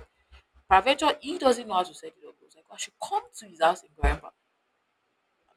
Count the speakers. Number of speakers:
1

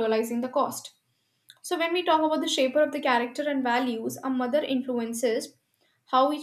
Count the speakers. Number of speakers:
1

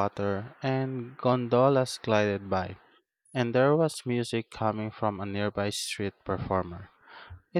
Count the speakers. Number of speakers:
1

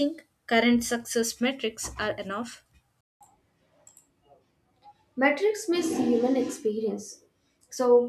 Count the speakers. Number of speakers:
2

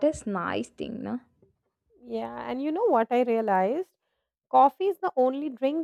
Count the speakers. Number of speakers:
2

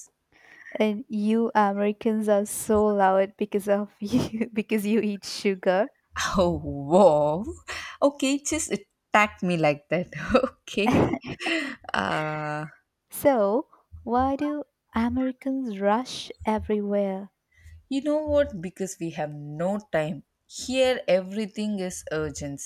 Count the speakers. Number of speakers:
2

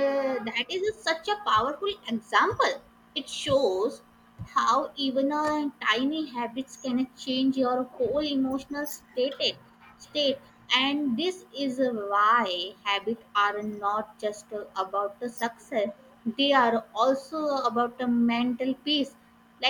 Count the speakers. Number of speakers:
1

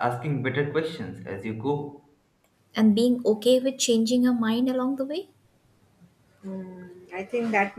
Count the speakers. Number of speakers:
3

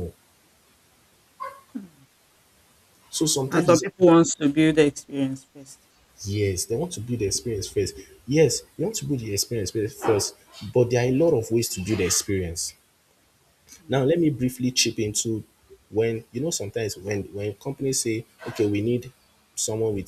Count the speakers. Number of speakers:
2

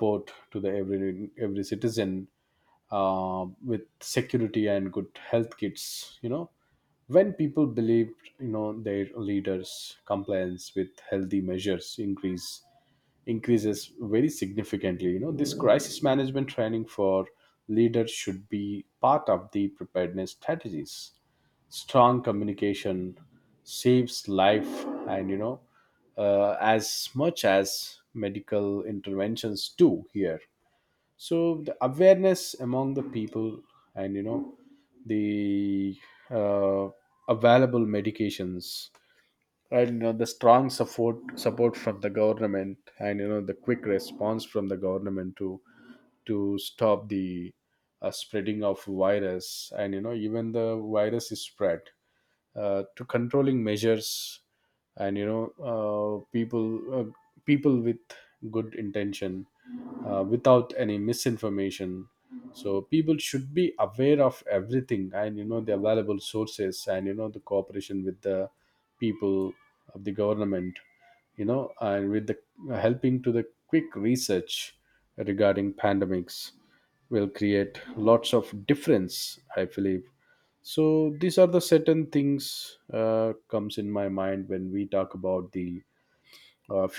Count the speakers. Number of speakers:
1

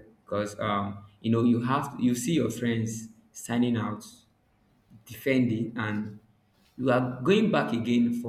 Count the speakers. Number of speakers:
1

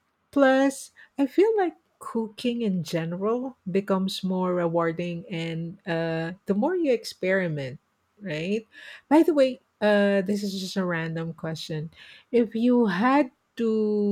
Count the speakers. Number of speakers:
1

